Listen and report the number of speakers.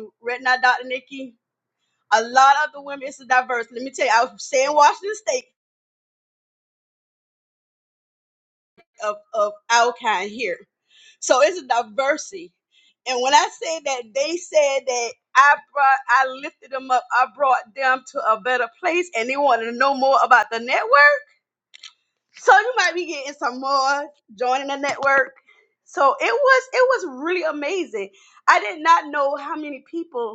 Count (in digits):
1